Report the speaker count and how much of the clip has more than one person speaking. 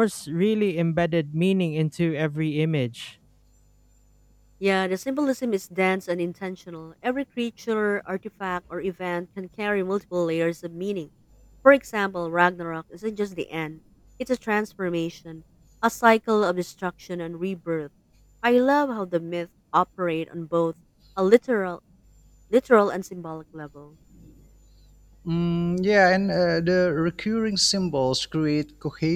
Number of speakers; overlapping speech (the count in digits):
3, no overlap